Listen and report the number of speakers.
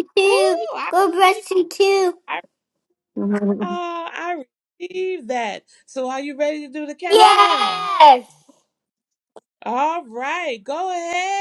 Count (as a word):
two